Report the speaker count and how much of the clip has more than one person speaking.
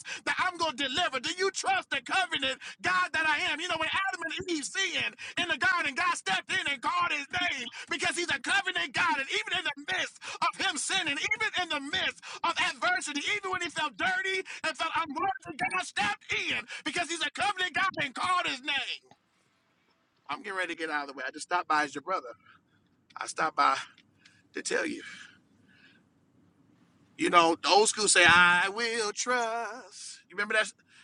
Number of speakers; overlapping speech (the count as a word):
one, no overlap